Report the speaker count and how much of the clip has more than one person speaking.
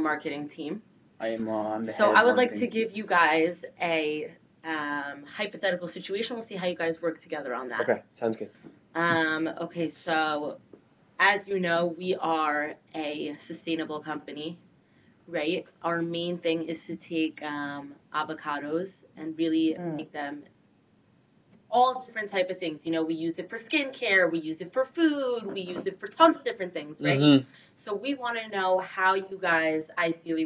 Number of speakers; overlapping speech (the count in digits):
3, about 4%